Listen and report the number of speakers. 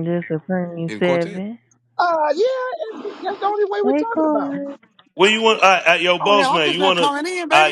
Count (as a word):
four